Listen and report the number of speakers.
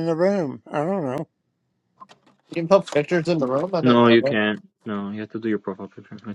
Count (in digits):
3